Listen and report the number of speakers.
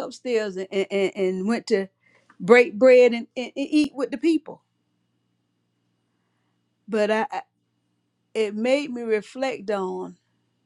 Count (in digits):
1